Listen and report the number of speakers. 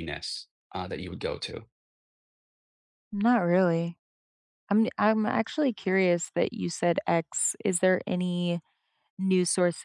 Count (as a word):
two